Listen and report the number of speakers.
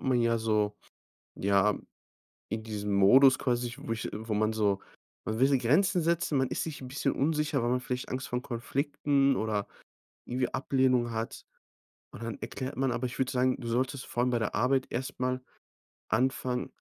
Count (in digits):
1